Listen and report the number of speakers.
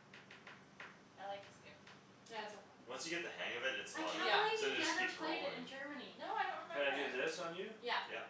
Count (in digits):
4